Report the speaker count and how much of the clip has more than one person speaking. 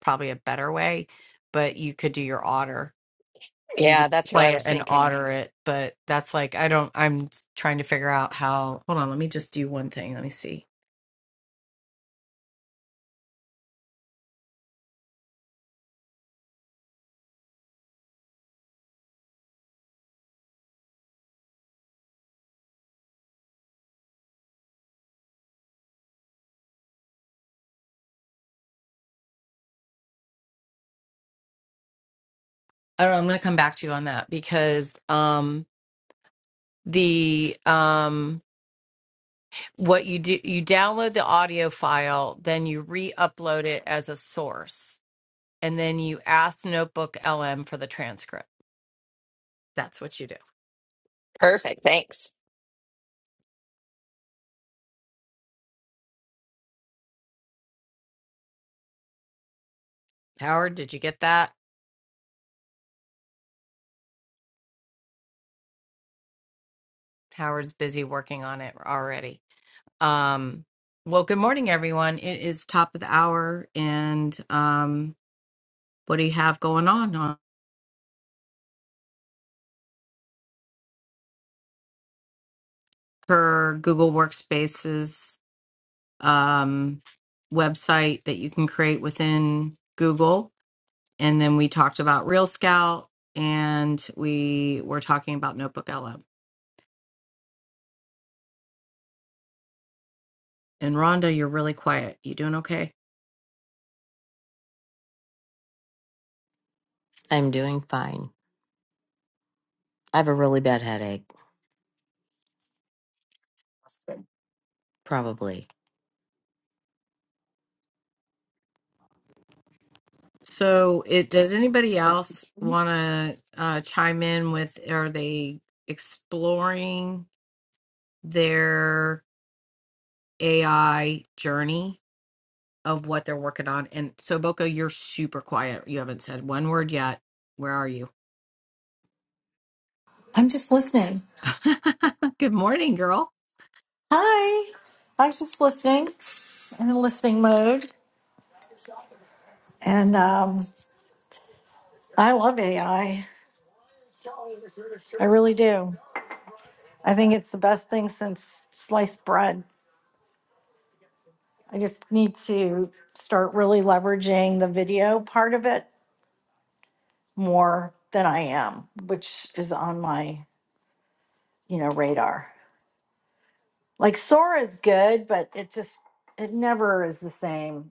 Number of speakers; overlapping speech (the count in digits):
4, about 1%